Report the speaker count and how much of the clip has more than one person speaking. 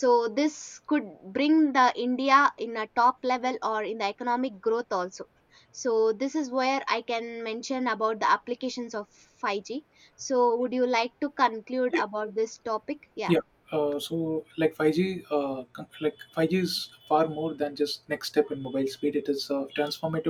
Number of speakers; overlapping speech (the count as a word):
two, under 1%